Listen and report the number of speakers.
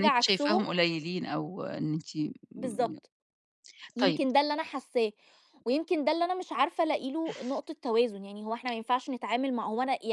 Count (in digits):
2